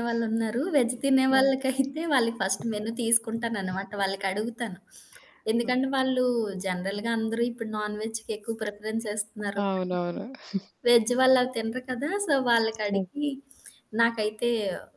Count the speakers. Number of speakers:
2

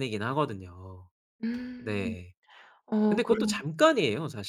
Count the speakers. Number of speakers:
2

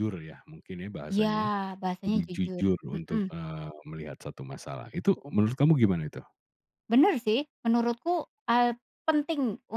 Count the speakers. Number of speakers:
2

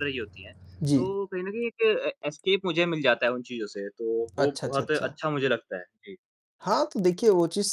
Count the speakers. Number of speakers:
2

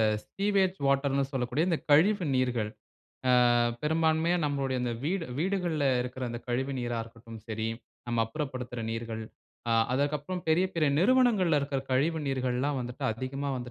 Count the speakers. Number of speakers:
1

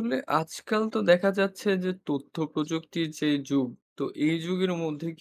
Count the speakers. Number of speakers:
1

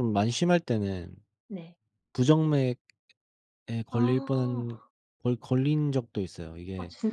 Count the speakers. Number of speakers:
2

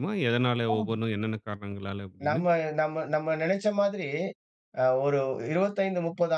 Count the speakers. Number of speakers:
2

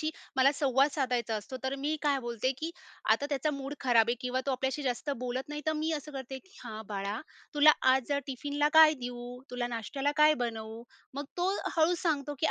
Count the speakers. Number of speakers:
1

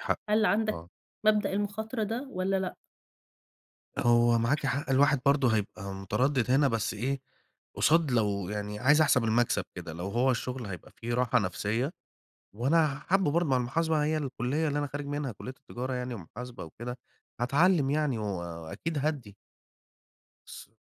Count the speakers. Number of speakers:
2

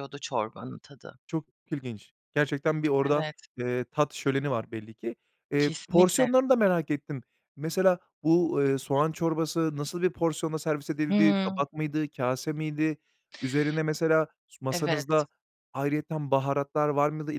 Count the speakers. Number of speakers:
2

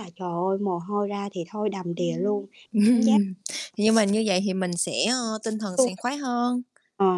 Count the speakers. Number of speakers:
2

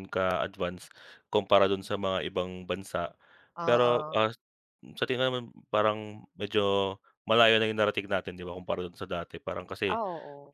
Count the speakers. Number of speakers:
2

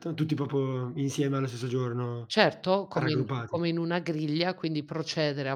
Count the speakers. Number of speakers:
2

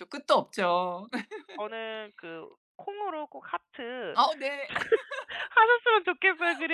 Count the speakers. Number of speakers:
2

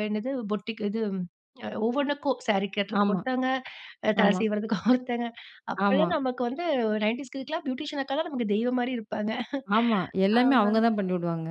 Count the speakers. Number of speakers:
2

